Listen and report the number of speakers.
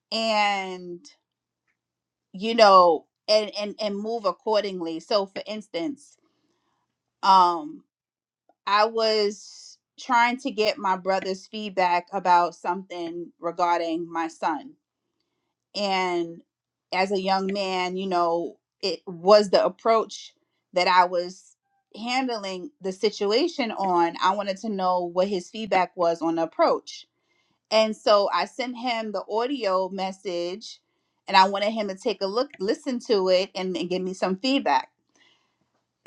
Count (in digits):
1